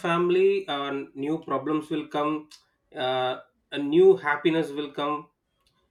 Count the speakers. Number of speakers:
one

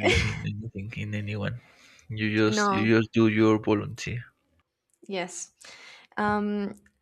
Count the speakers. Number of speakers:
two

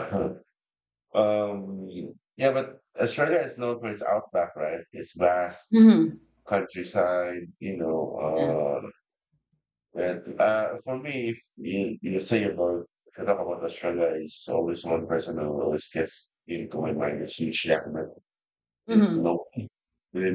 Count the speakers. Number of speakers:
two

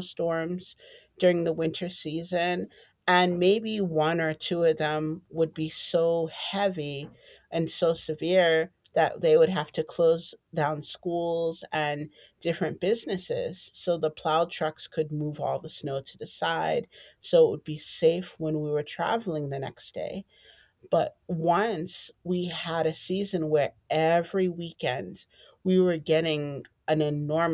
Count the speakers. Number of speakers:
one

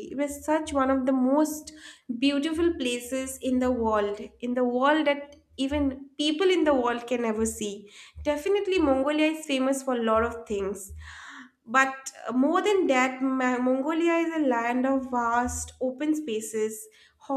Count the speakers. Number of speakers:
one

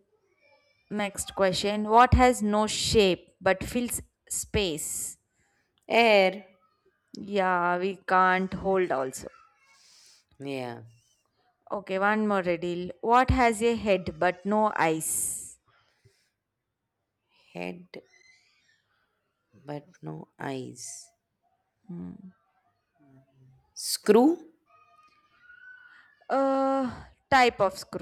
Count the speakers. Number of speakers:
two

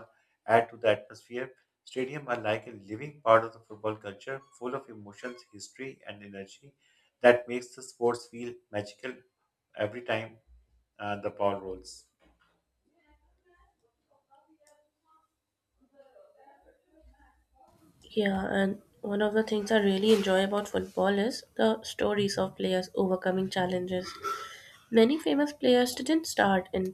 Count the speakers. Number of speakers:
two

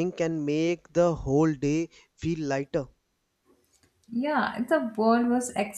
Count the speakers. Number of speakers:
two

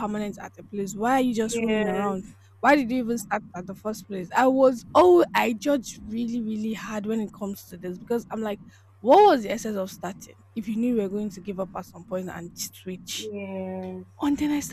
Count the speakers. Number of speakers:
two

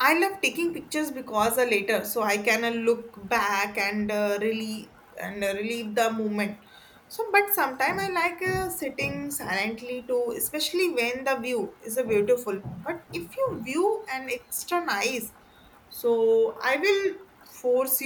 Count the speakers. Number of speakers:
one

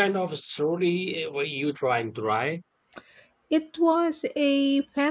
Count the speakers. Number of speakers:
two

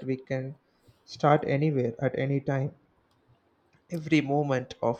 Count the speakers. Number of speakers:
one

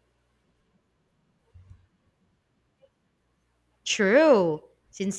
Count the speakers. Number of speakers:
one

